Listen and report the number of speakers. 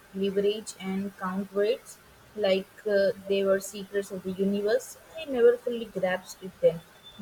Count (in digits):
1